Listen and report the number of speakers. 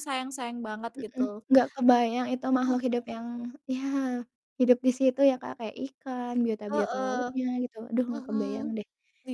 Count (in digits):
2